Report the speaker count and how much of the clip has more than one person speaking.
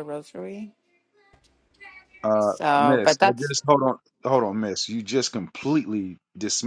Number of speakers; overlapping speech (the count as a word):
two, about 15%